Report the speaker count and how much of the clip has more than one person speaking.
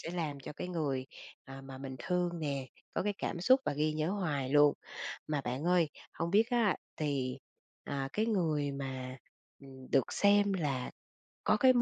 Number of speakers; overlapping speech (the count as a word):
one, no overlap